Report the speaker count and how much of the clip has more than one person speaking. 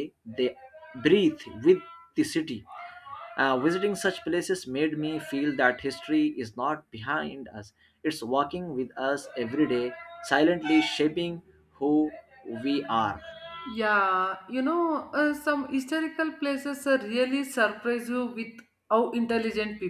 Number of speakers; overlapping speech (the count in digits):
2, no overlap